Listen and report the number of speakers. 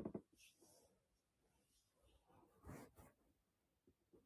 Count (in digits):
0